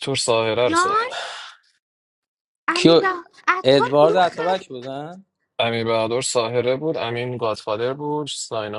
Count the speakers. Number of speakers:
3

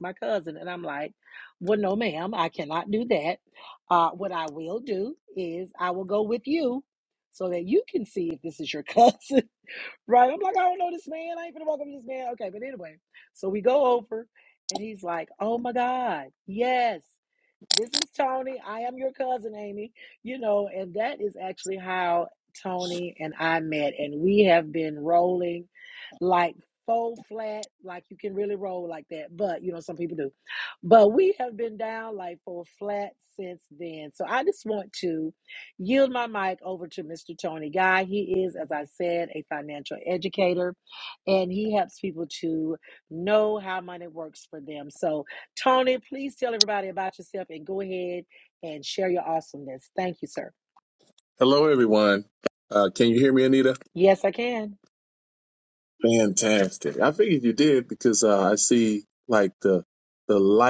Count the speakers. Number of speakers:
2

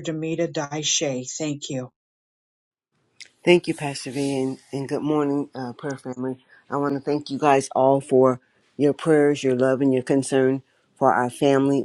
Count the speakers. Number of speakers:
2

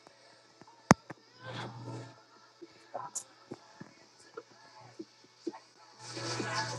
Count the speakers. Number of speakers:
0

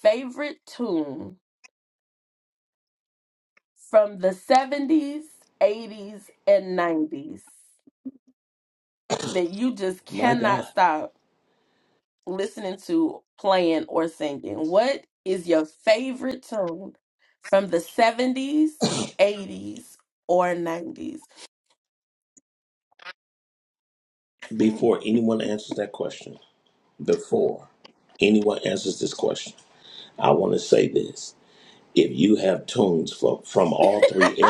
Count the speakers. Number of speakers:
2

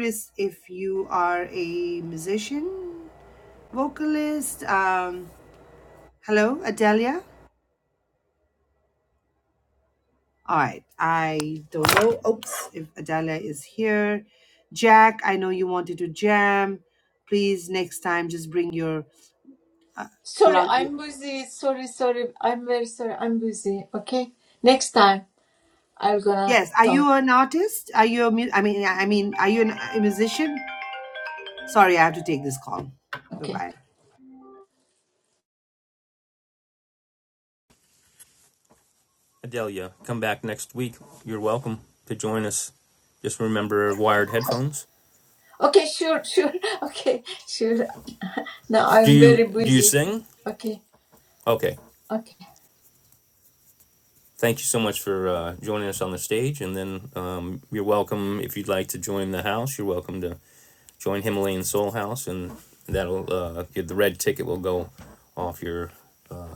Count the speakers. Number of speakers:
3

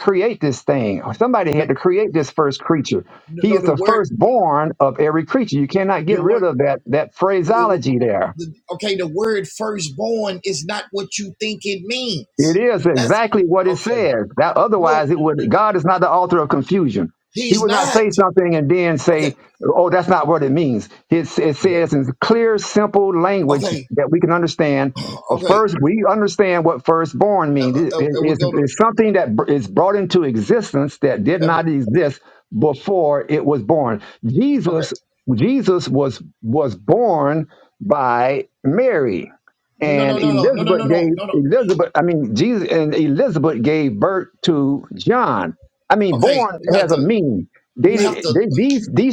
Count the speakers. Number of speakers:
2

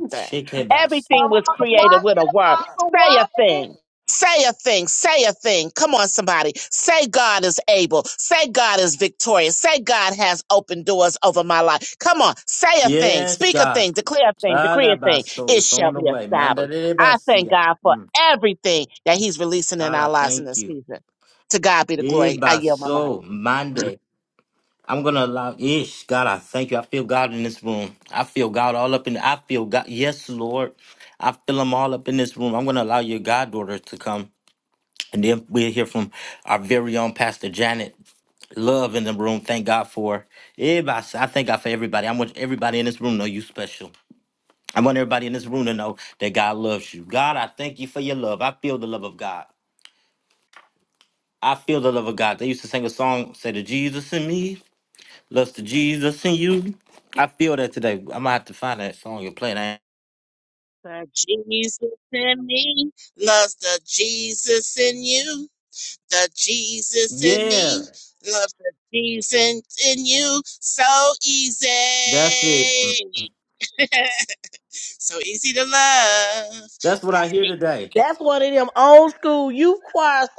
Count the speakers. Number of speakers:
3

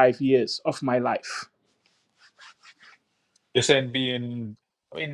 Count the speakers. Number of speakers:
2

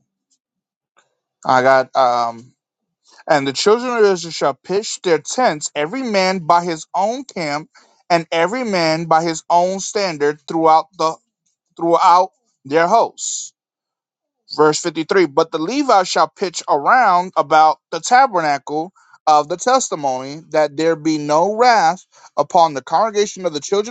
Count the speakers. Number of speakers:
1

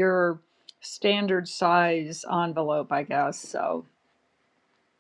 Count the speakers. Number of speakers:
1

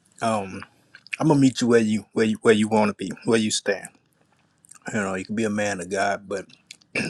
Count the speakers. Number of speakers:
1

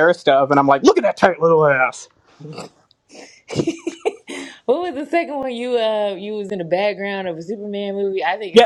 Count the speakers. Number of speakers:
2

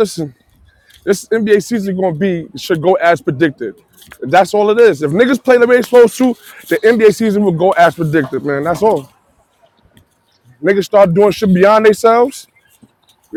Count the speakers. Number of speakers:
1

